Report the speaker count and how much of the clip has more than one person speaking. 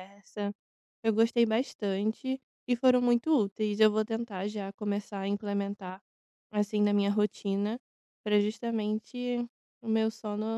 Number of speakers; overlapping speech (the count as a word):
one, no overlap